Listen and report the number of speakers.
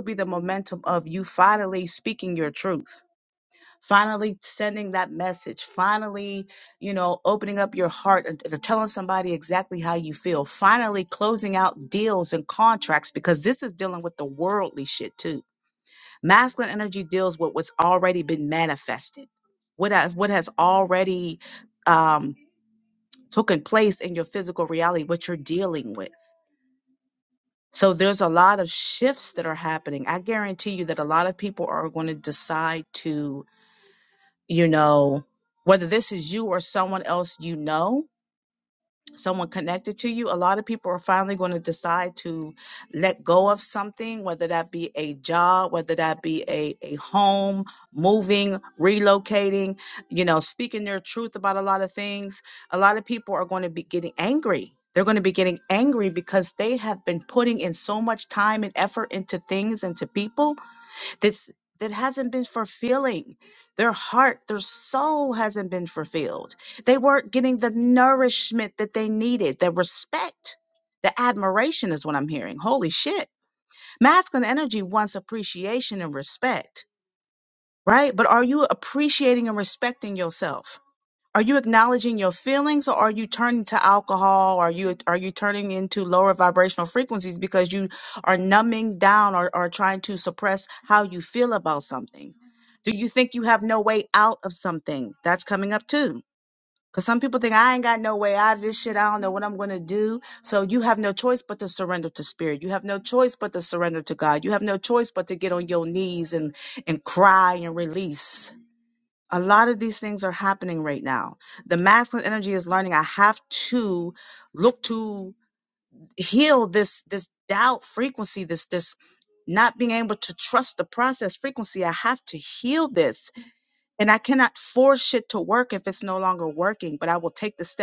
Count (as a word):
one